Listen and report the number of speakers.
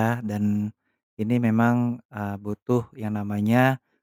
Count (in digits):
1